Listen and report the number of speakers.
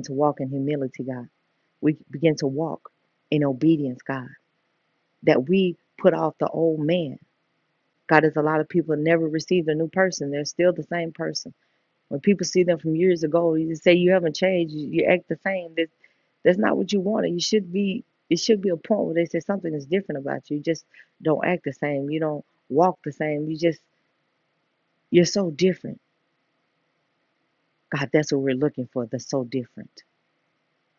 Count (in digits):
1